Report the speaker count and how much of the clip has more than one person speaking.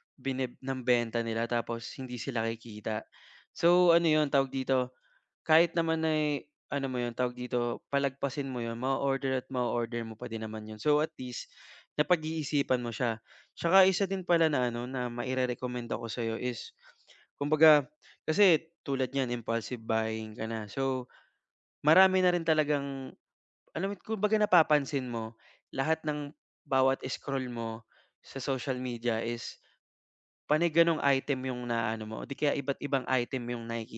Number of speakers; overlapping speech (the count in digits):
1, no overlap